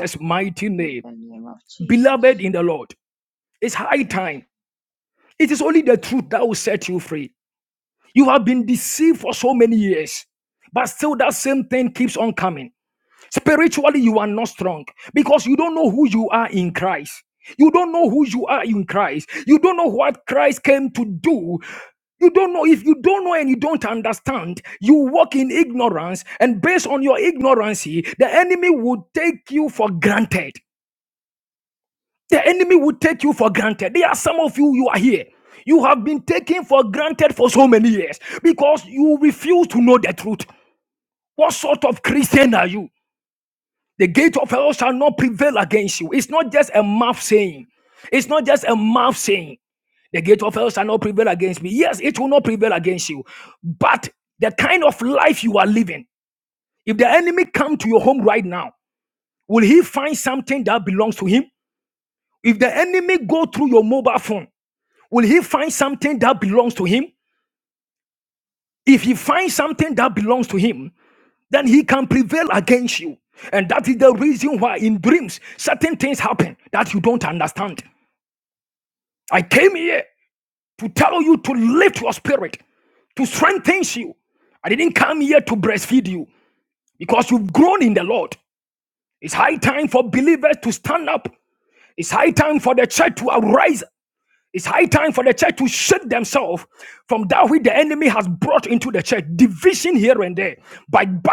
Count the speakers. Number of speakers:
two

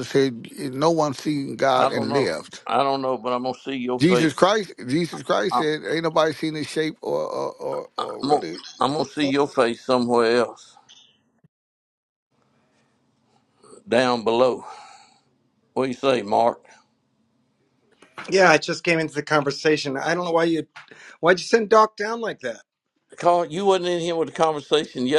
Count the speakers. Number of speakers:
three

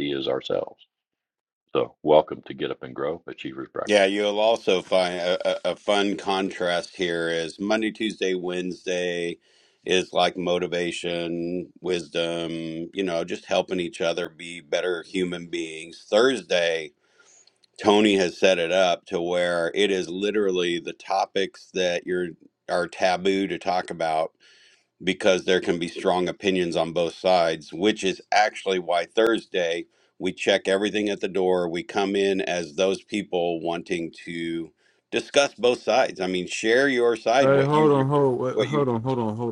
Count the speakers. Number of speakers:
three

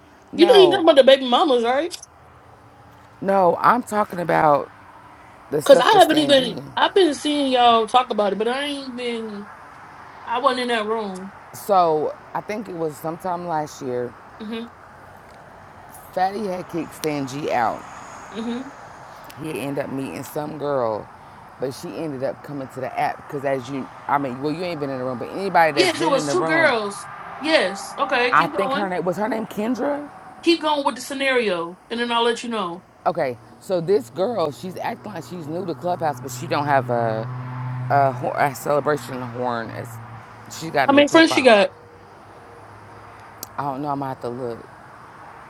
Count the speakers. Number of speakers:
two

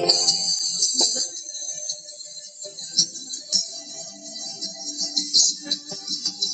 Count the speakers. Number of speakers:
zero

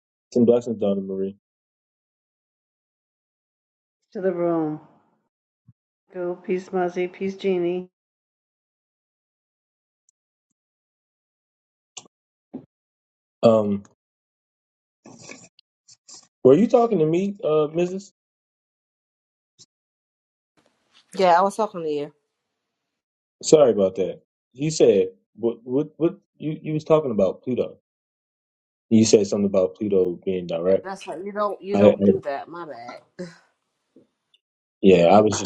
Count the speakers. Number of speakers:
three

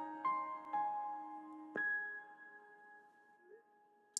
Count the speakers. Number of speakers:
zero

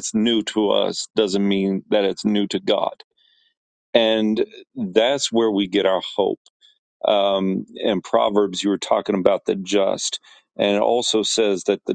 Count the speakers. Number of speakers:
one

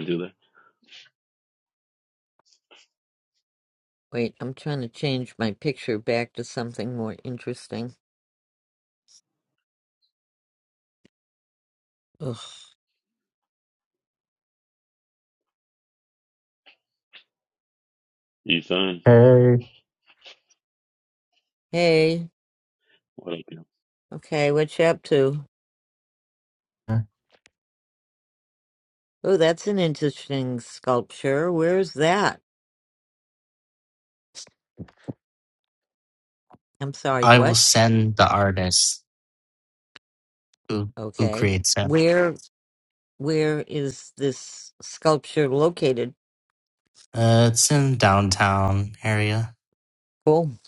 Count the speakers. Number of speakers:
three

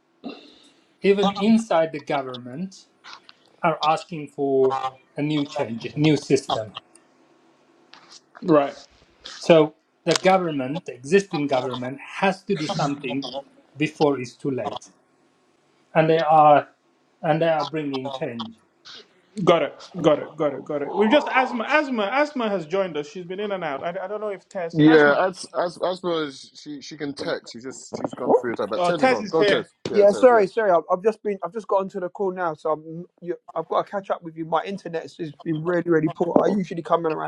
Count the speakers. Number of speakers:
four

